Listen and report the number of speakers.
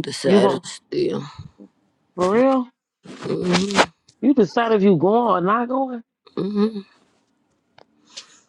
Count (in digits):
2